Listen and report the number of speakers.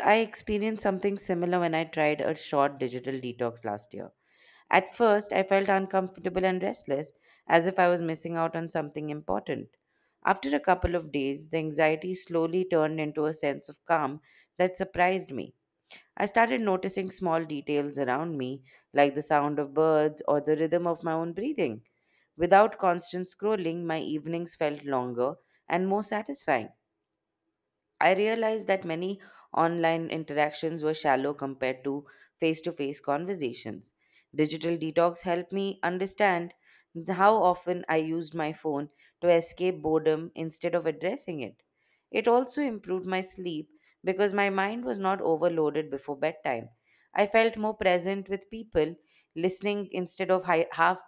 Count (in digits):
1